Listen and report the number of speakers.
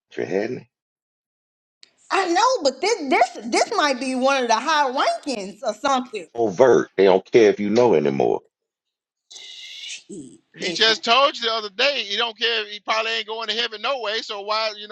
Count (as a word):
three